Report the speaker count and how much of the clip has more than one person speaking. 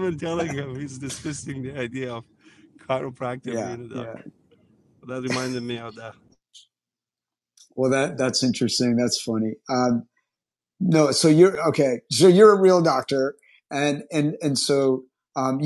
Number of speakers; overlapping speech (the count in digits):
2, about 4%